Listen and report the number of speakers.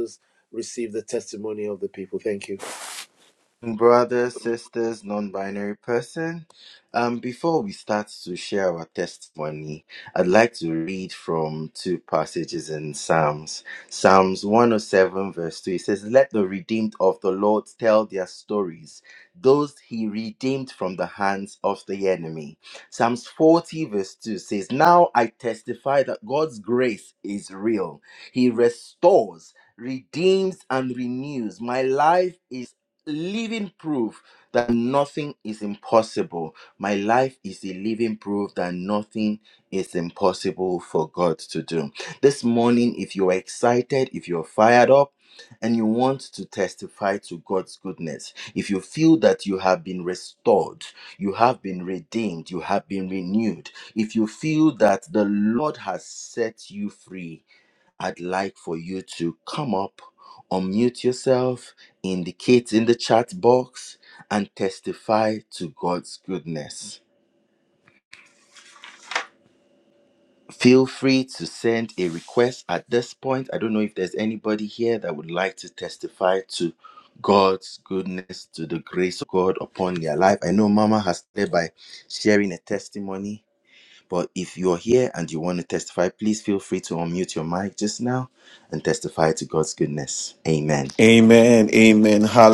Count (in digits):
3